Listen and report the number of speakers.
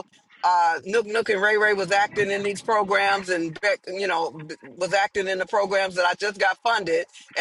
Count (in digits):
1